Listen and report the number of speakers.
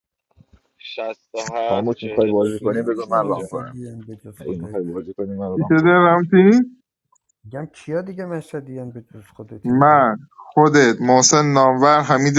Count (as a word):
four